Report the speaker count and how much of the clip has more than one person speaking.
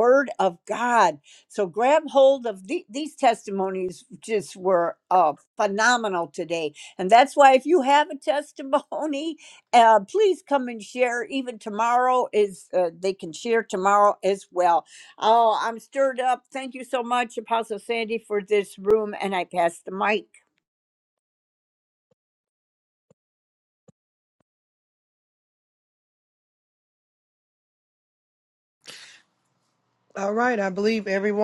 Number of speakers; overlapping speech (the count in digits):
2, no overlap